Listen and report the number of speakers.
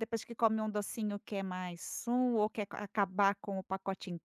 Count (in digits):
1